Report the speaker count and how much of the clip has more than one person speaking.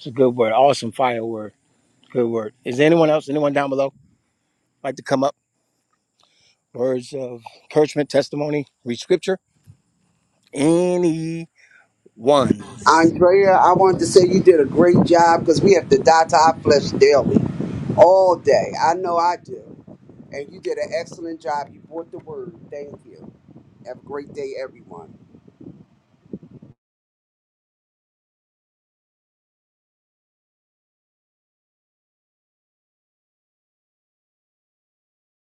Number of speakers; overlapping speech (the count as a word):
two, no overlap